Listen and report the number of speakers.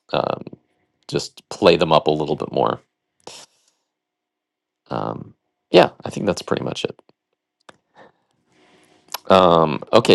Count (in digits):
1